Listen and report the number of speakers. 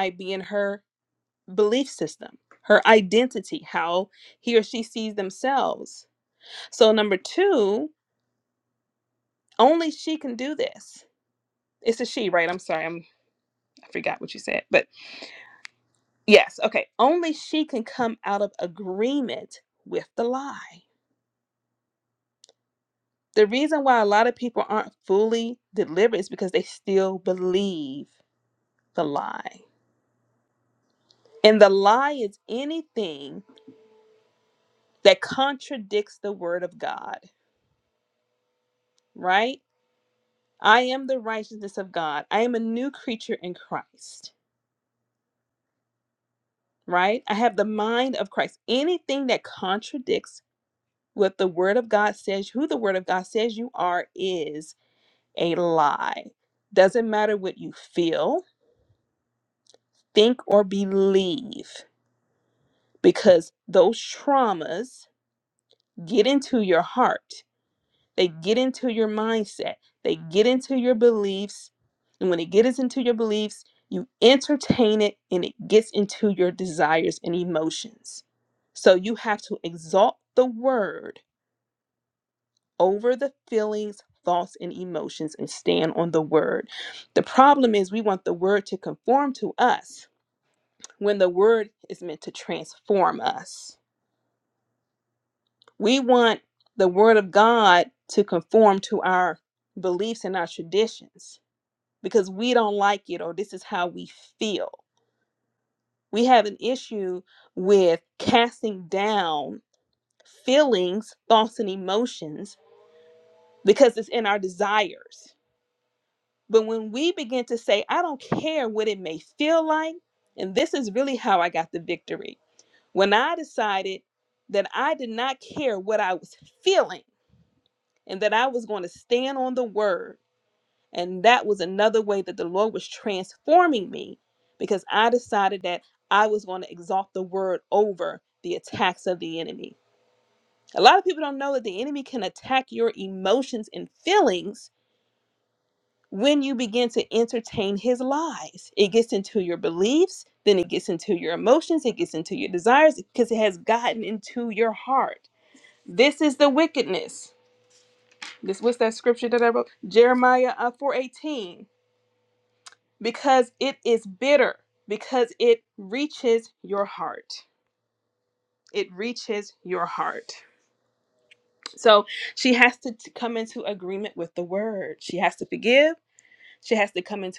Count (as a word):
one